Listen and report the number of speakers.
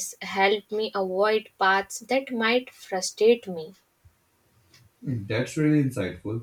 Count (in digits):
2